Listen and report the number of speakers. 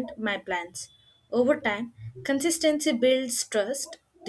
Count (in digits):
1